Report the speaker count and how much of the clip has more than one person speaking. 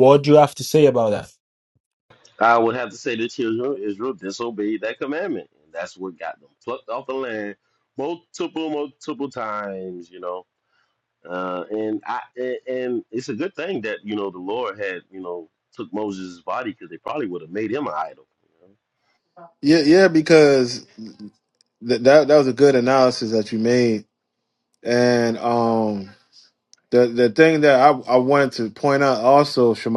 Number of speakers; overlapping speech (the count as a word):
three, no overlap